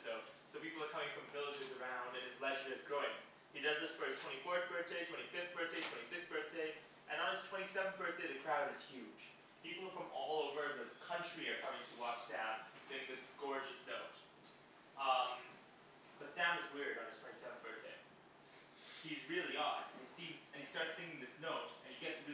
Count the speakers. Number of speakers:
1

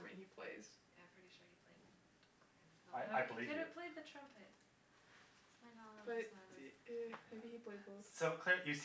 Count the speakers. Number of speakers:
3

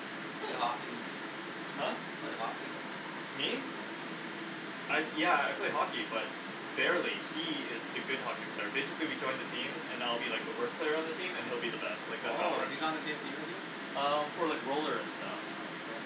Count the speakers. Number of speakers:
2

